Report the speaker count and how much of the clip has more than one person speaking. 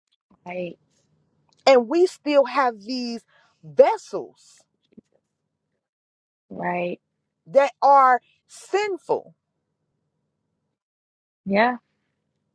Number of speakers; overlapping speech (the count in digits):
2, no overlap